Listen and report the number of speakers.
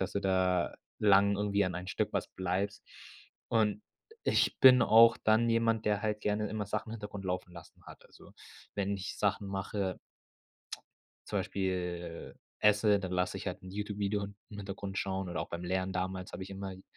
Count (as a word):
one